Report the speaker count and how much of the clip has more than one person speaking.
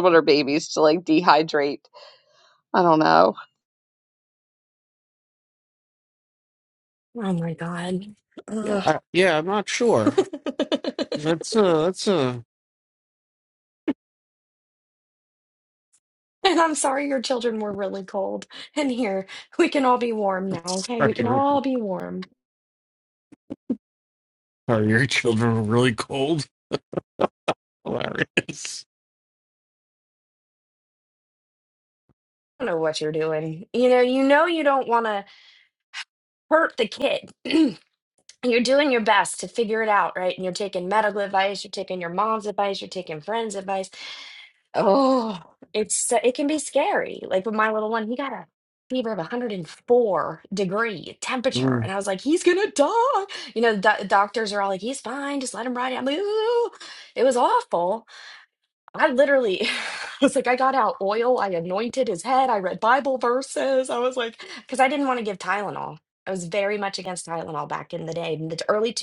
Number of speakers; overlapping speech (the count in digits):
3, about 2%